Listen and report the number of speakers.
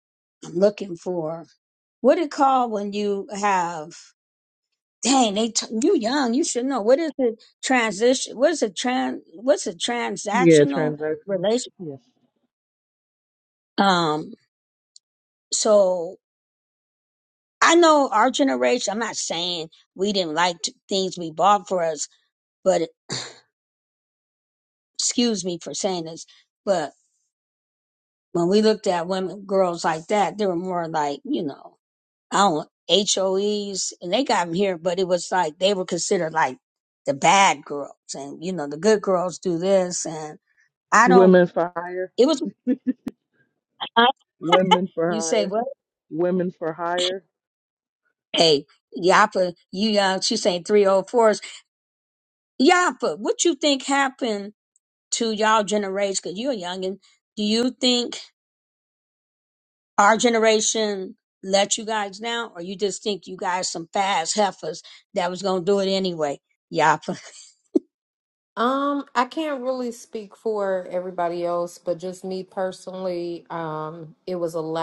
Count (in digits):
3